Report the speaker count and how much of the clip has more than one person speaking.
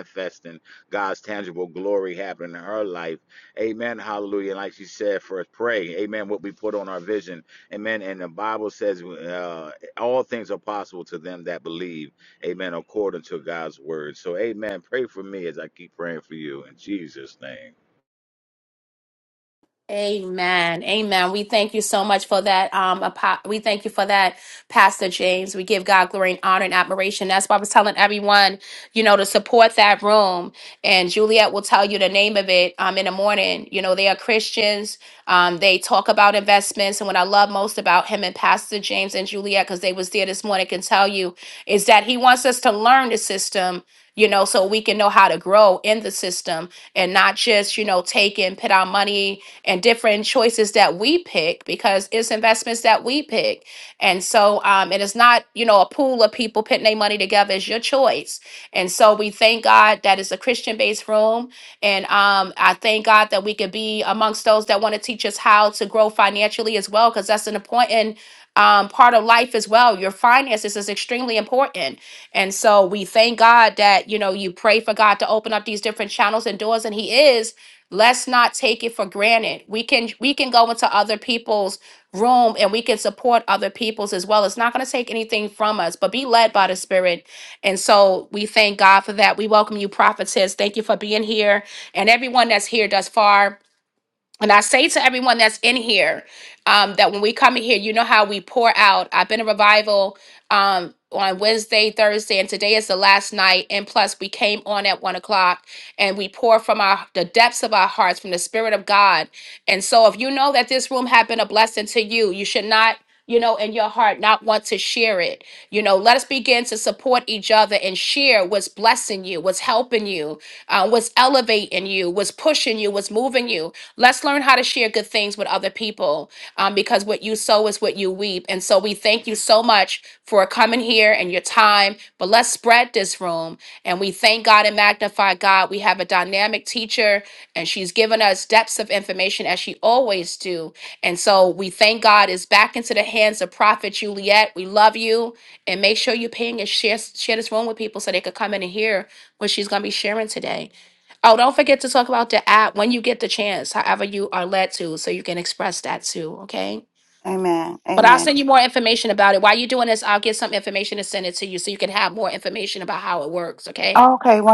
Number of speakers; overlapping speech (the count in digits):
3, under 1%